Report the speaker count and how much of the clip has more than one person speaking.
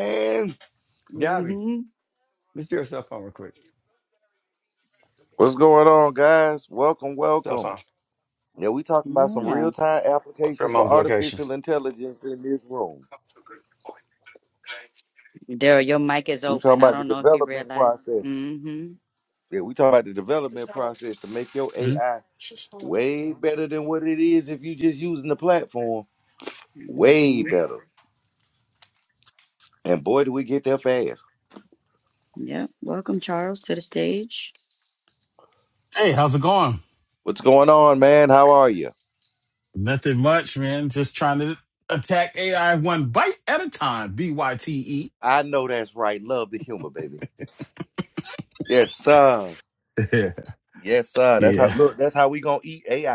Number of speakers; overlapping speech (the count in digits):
4, about 10%